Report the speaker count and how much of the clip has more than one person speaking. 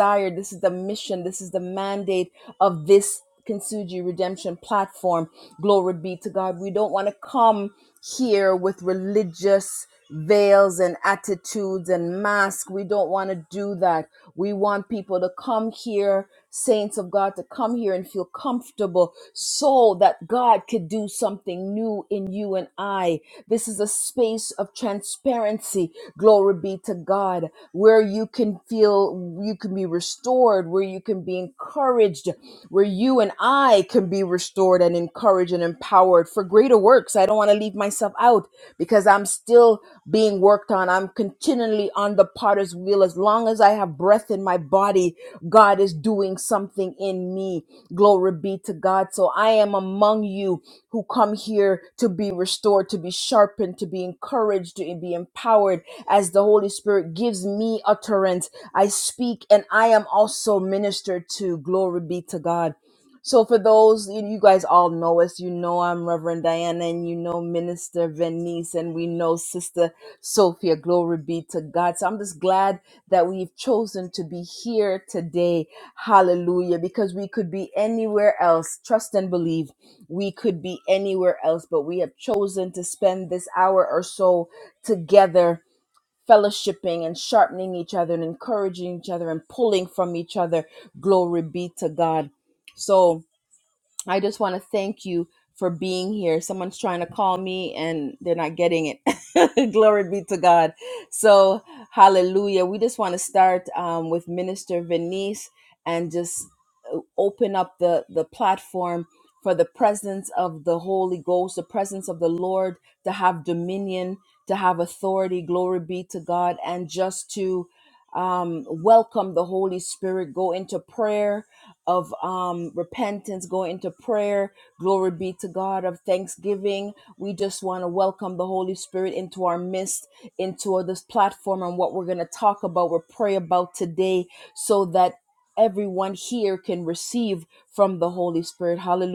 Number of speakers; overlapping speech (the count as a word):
one, no overlap